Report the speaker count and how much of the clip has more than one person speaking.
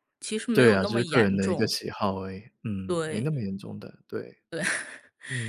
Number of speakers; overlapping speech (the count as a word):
two, about 28%